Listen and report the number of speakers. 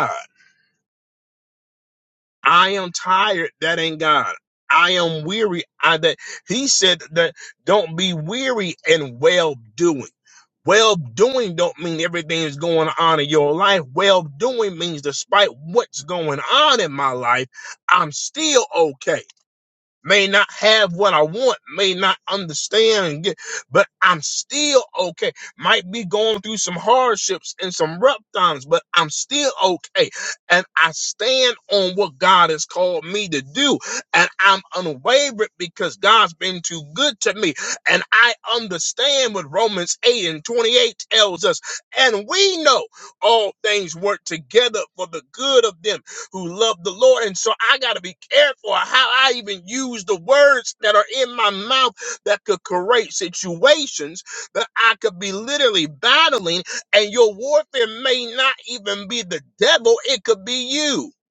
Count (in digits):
1